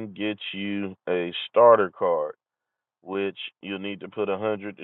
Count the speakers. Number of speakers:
one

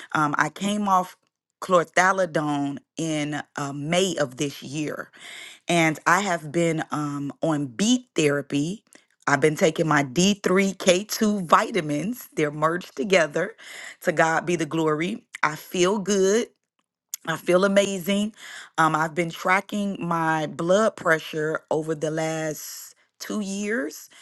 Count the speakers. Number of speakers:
one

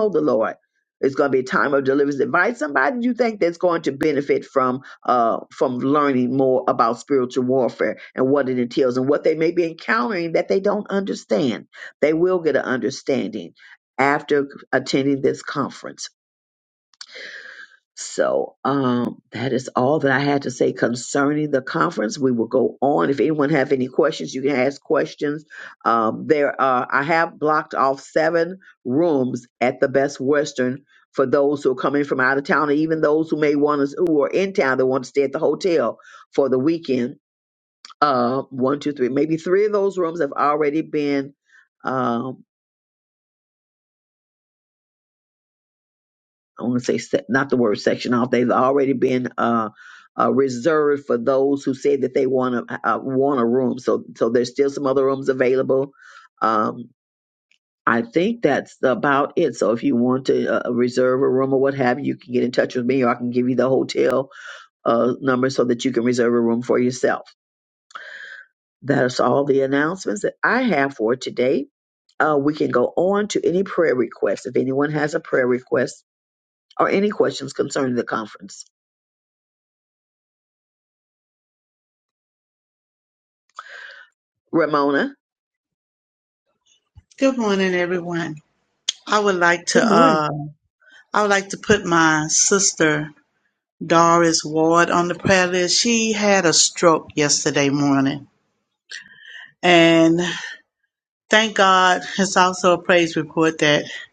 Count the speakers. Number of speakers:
two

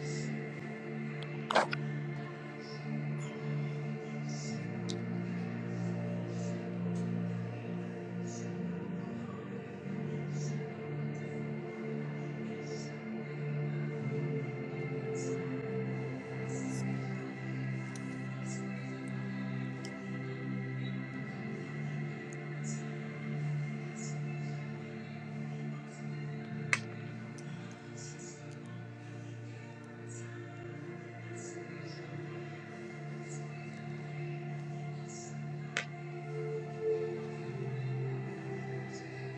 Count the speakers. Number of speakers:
zero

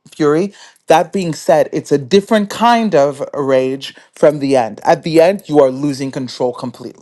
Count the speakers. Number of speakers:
one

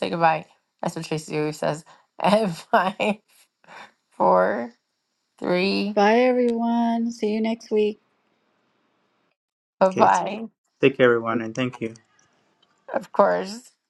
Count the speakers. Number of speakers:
three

